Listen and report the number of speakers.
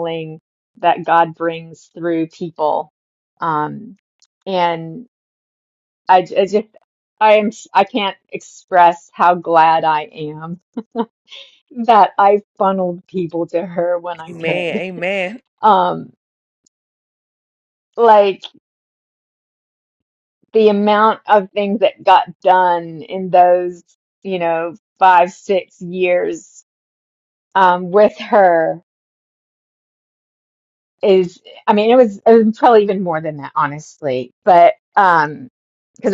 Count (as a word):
two